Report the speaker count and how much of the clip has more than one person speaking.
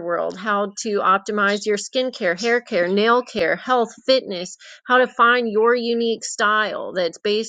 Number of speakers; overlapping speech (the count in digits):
1, no overlap